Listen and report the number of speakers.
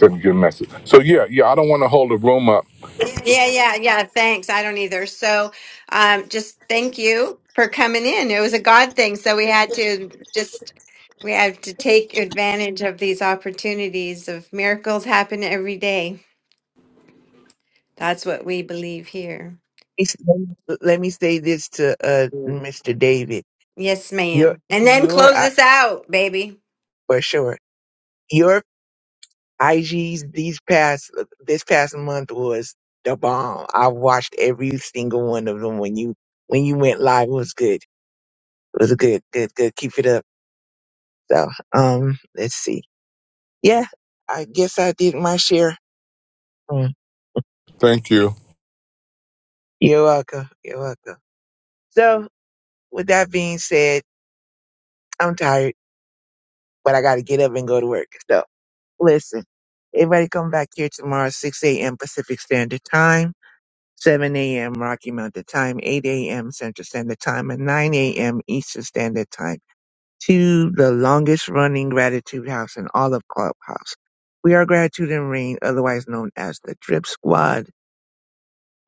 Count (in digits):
3